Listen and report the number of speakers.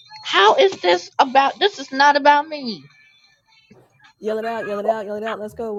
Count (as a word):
two